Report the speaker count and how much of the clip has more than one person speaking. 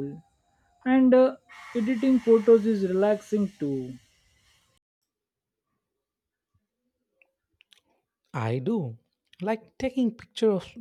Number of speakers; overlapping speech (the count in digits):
2, no overlap